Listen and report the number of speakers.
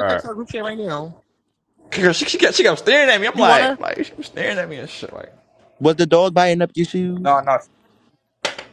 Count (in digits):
3